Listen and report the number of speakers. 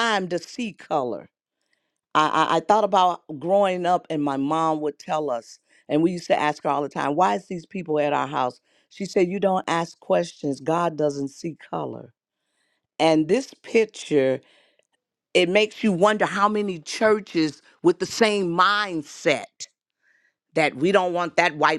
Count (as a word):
one